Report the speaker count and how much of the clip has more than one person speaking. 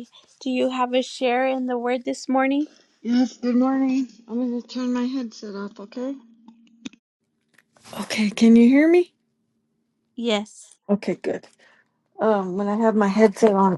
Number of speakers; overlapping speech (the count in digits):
2, no overlap